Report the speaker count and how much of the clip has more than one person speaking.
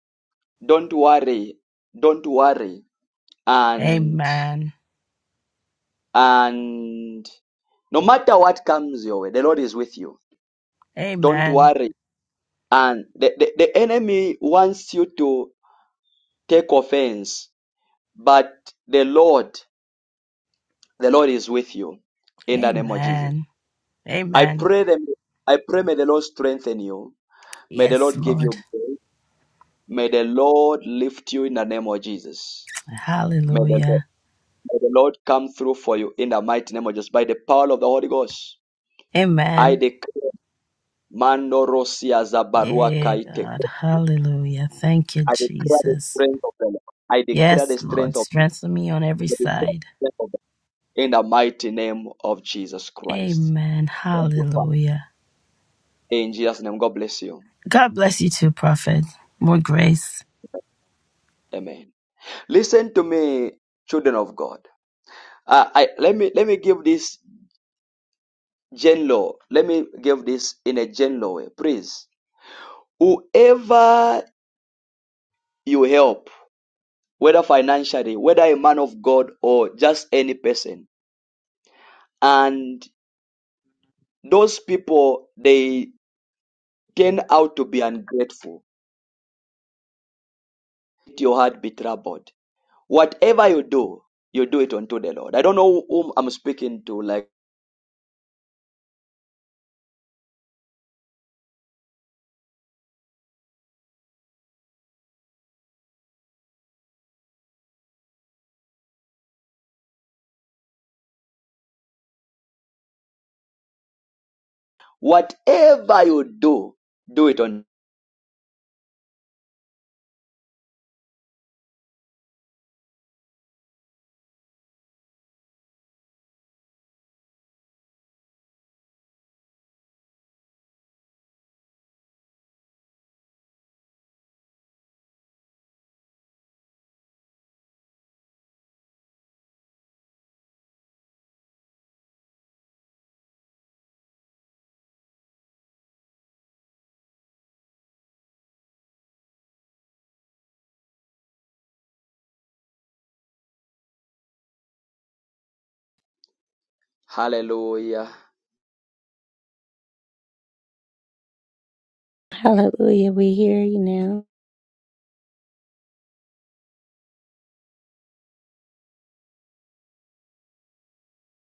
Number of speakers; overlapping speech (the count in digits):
3, about 4%